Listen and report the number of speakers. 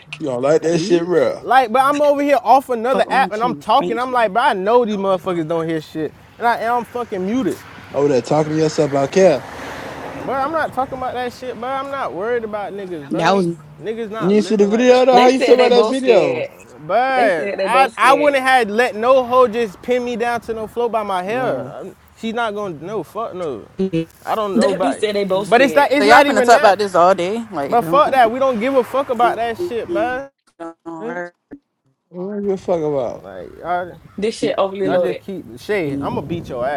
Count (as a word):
five